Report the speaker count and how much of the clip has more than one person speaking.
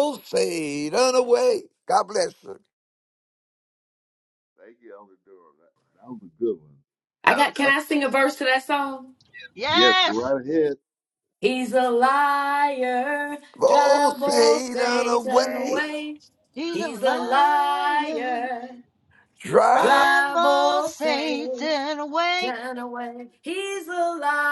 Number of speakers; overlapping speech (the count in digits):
4, about 26%